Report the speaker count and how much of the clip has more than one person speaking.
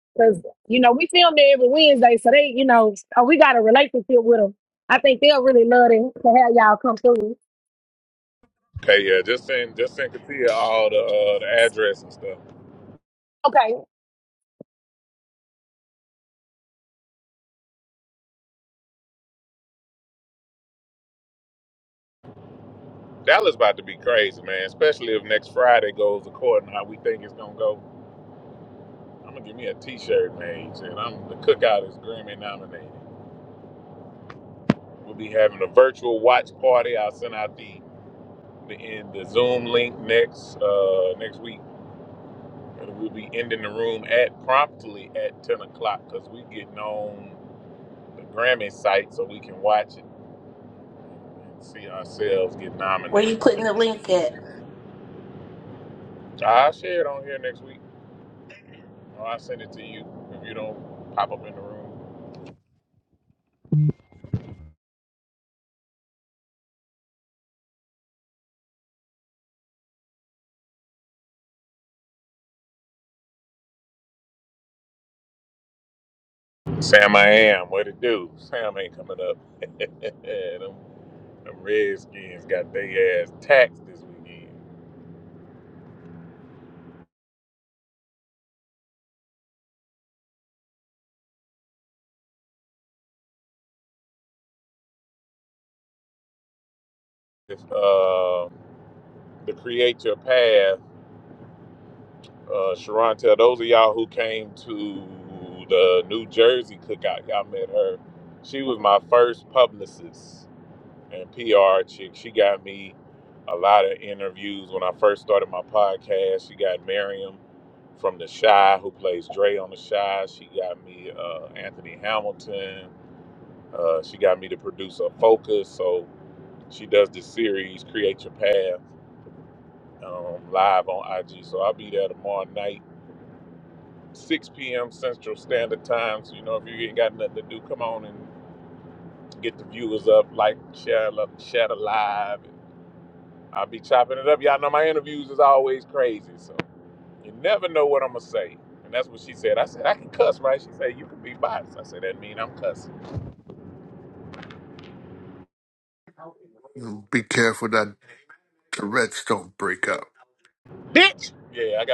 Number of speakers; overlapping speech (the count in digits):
4, under 1%